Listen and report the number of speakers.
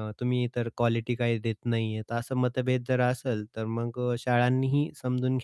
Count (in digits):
1